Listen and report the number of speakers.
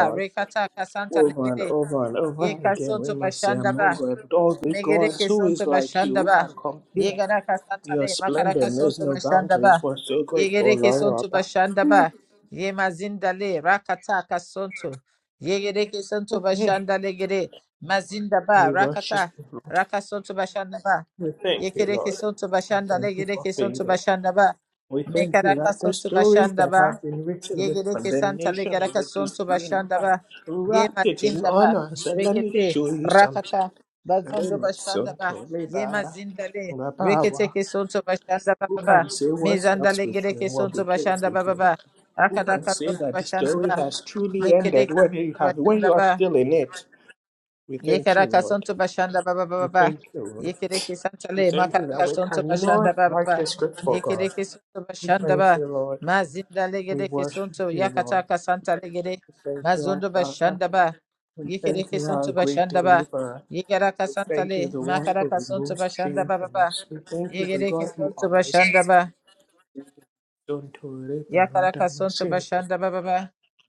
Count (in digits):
2